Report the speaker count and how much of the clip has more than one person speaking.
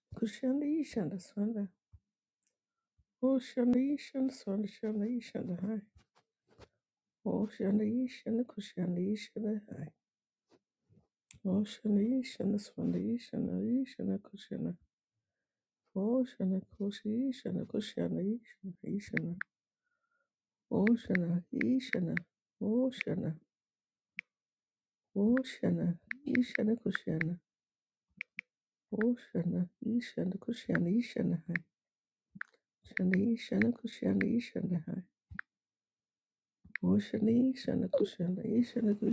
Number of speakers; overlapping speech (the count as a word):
one, no overlap